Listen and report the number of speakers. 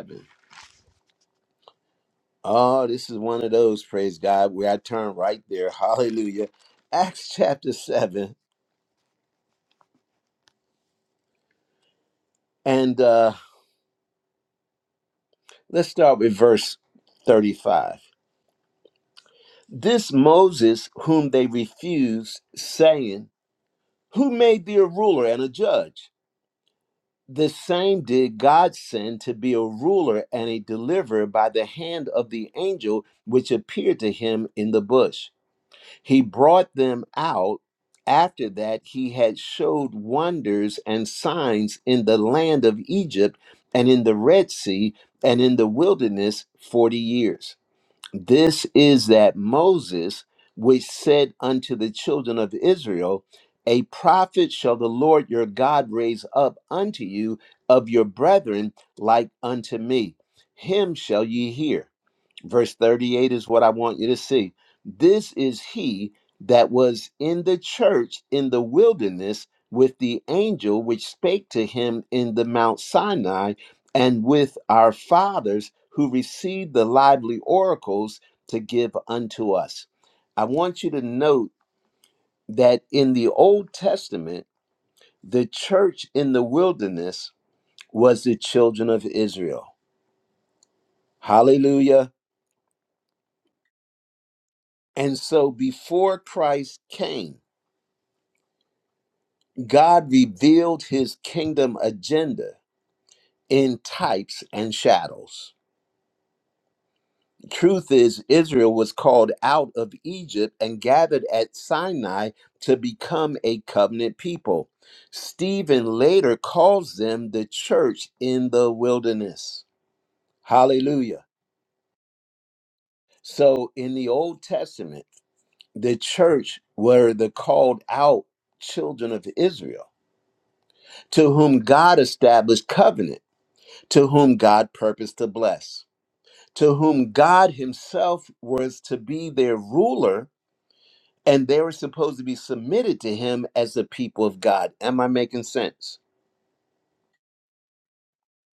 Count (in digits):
1